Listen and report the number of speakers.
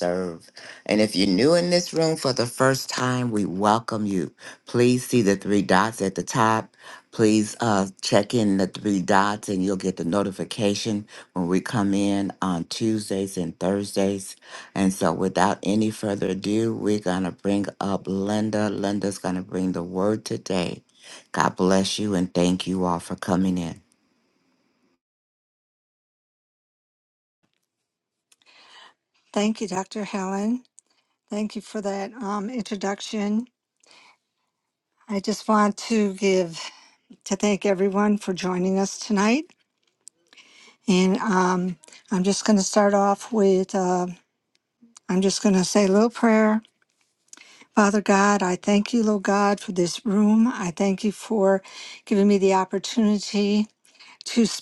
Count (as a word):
two